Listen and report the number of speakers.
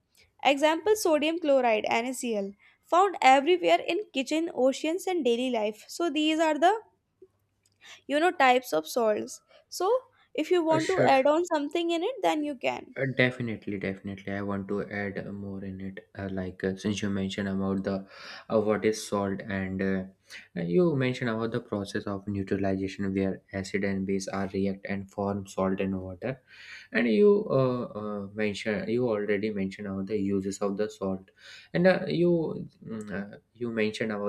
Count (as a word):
two